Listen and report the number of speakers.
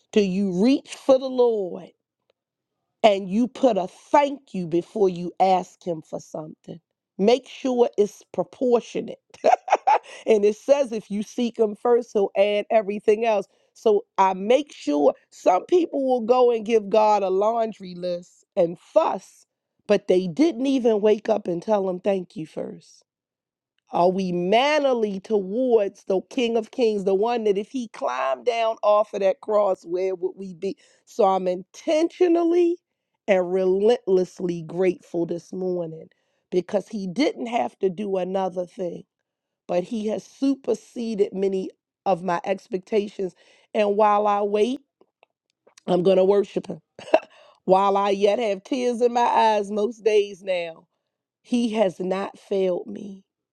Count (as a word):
one